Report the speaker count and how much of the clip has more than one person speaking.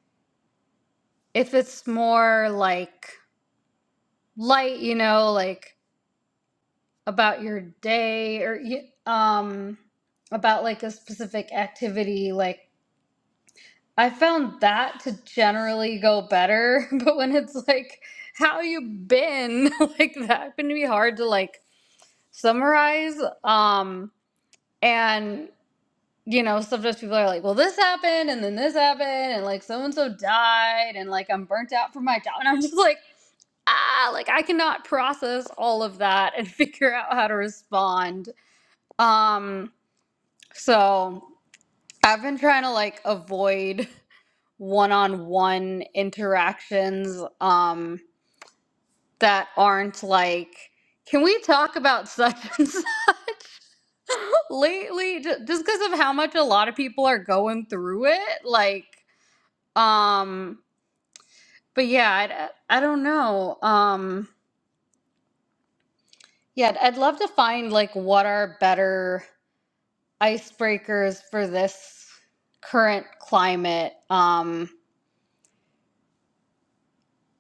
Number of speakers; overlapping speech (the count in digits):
1, no overlap